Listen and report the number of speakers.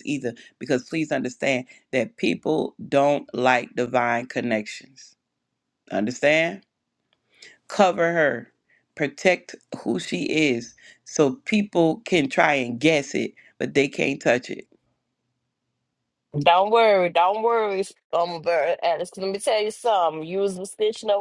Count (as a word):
two